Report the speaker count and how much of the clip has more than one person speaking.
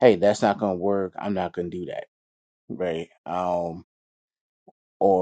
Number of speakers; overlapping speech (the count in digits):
1, no overlap